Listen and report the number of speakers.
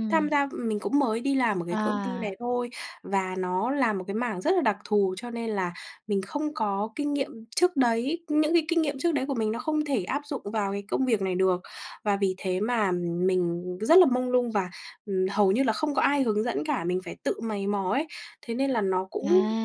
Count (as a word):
two